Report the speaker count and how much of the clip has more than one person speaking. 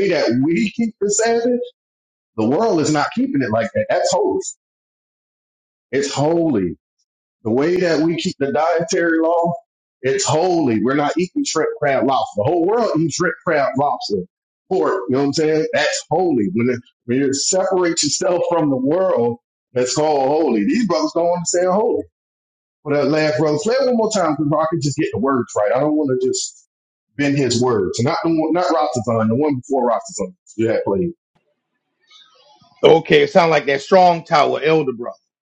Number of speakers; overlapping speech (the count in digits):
2, no overlap